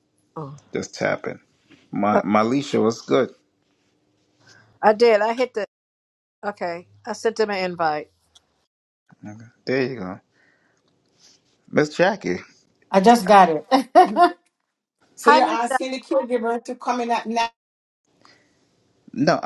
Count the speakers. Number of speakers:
three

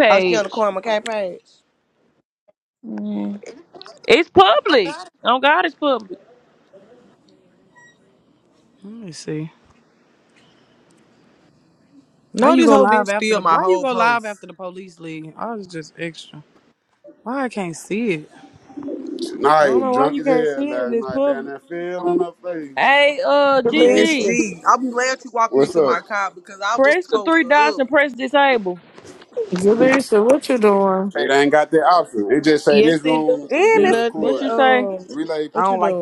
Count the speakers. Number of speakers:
six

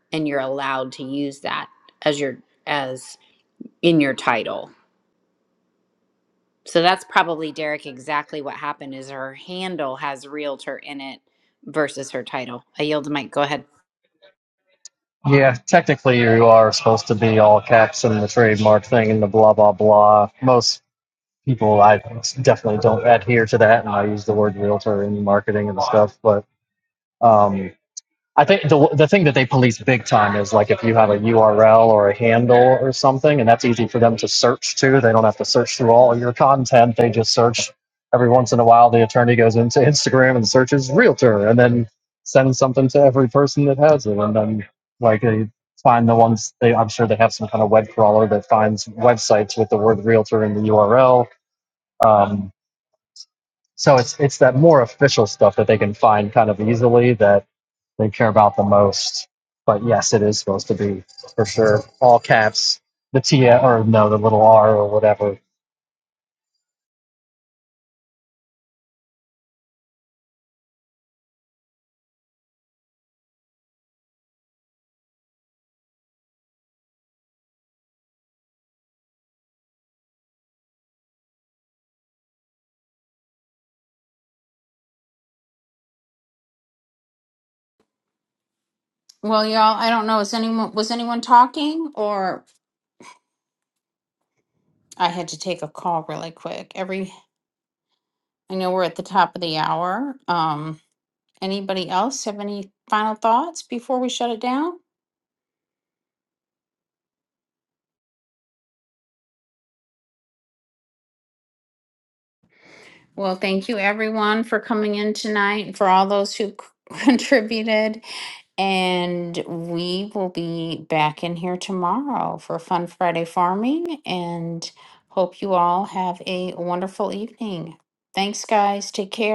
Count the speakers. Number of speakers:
three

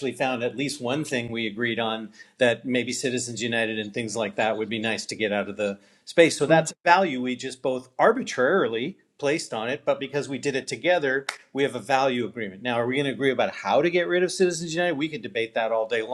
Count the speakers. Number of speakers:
one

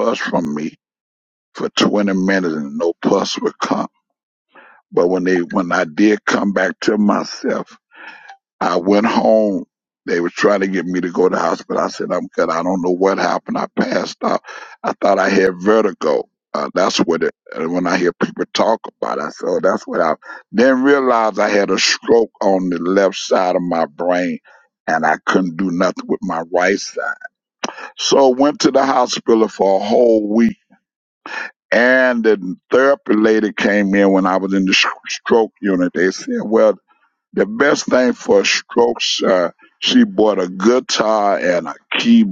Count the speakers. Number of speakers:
one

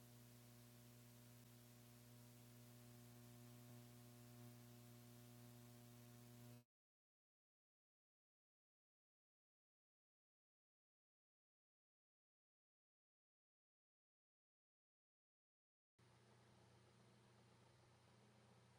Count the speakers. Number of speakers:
zero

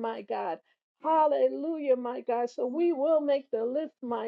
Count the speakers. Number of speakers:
one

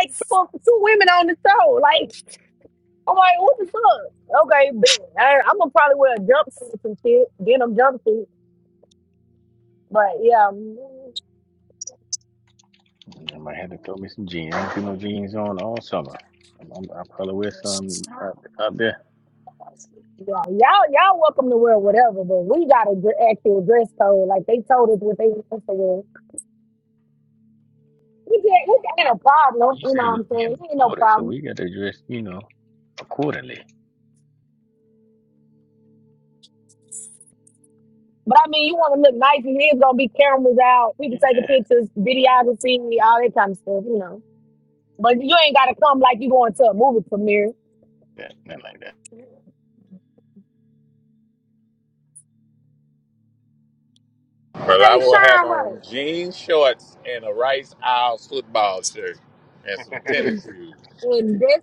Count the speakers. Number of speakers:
three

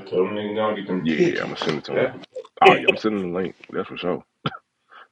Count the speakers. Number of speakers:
two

